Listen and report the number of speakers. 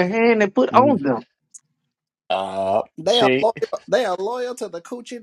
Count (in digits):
3